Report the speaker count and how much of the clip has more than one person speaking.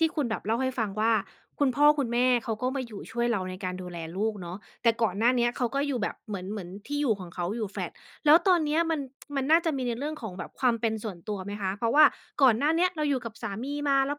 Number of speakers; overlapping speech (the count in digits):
1, no overlap